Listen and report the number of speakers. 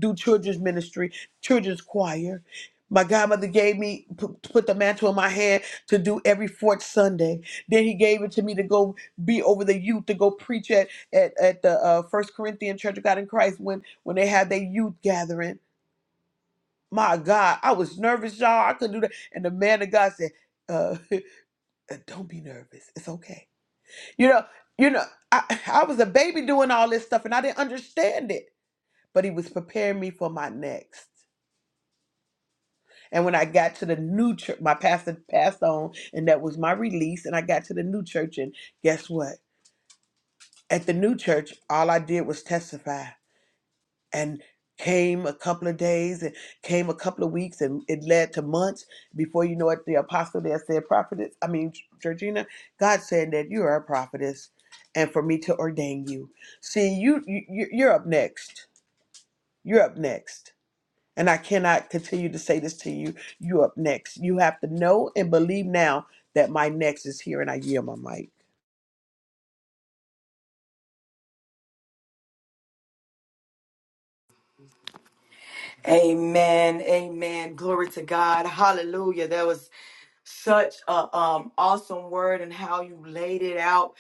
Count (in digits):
2